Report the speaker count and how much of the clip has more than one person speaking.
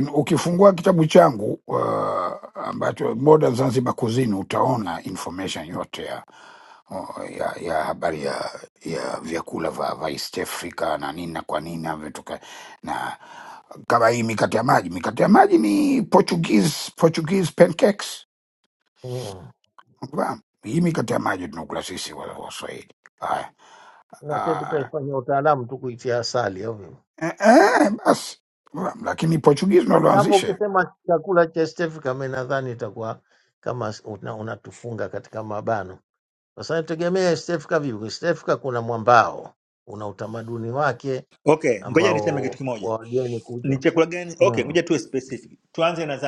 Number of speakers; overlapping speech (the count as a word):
three, about 6%